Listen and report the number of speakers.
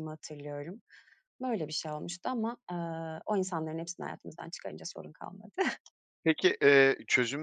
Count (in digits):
2